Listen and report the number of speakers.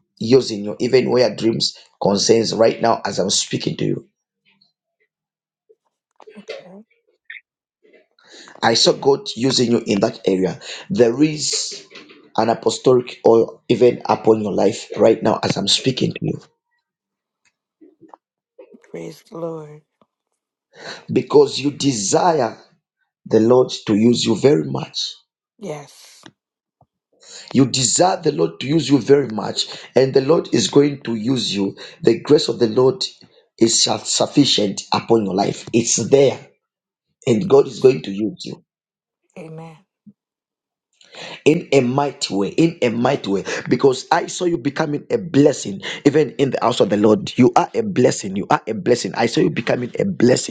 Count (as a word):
two